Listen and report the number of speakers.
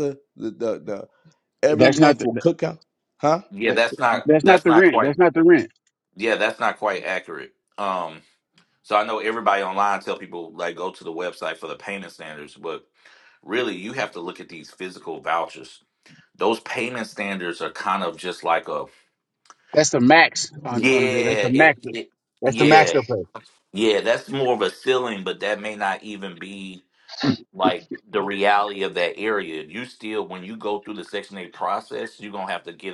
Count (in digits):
3